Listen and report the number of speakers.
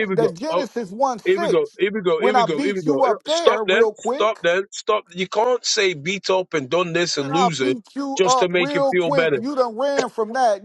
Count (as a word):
two